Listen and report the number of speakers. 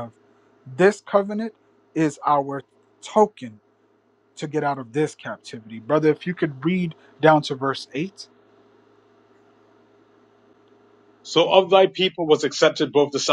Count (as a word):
two